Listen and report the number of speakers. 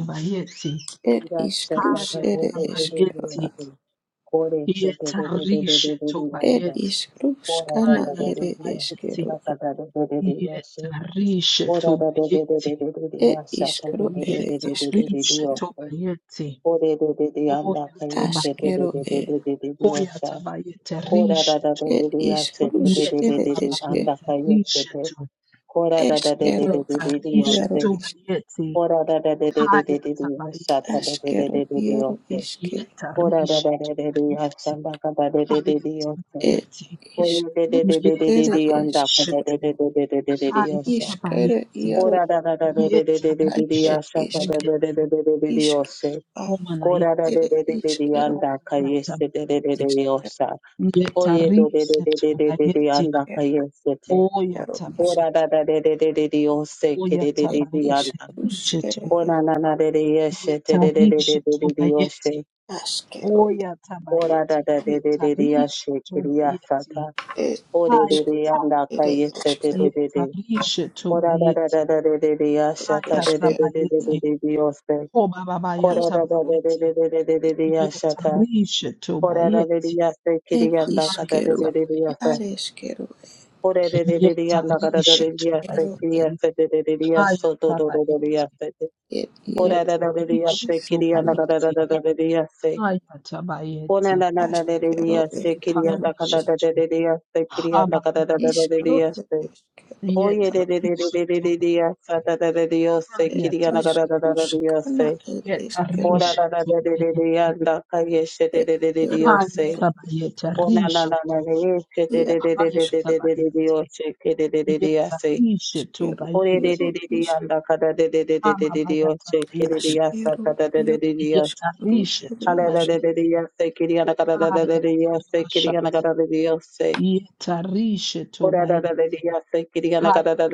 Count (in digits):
3